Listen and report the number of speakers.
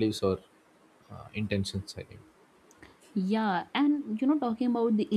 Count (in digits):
2